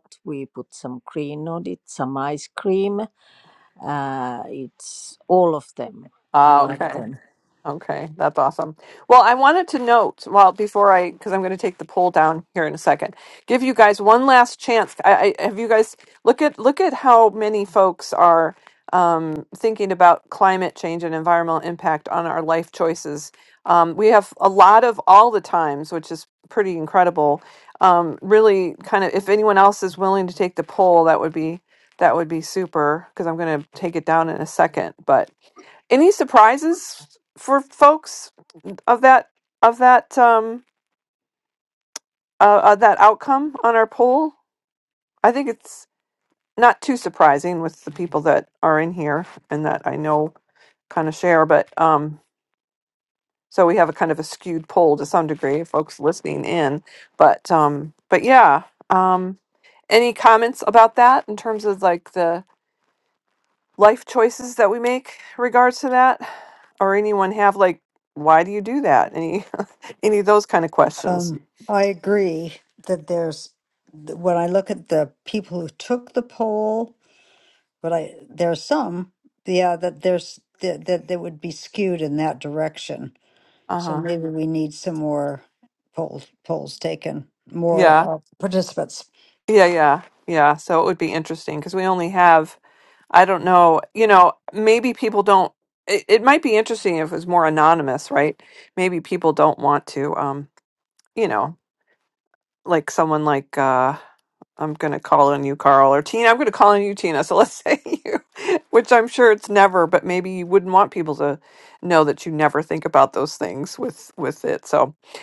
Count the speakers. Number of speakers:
3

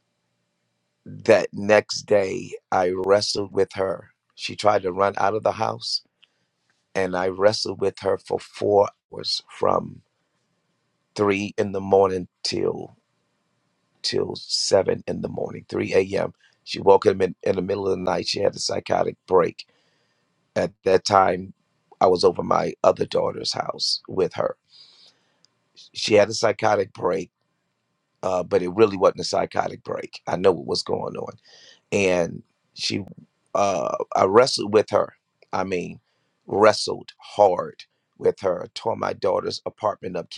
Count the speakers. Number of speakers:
1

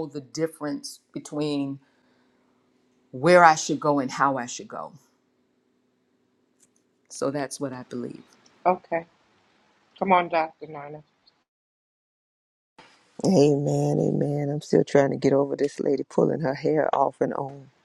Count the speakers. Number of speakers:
3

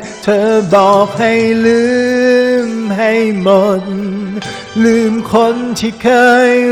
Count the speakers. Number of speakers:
1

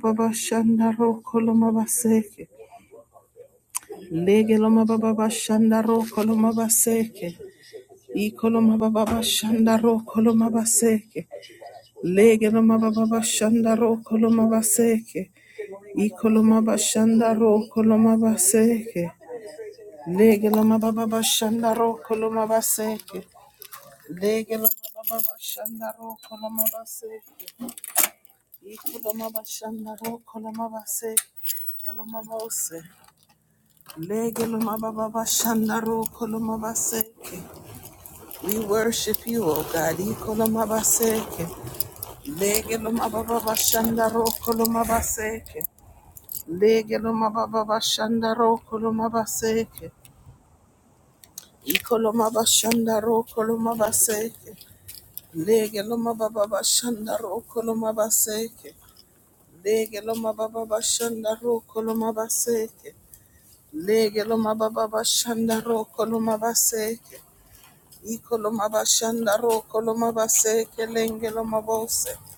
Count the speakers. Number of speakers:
1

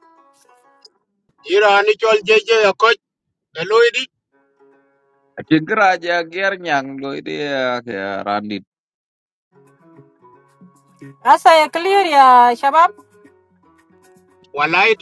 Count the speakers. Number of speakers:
3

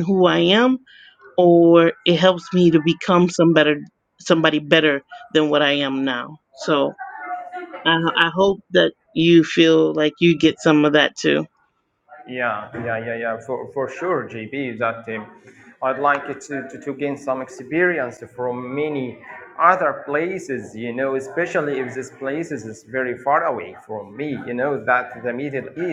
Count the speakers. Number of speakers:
2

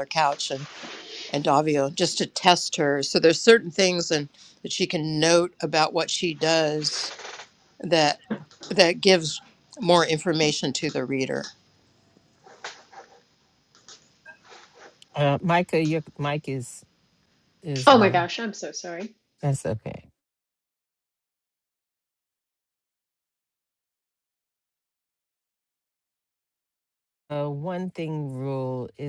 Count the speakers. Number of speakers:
3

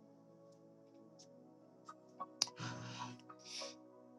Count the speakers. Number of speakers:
0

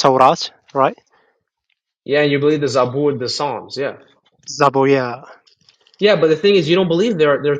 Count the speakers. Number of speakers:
2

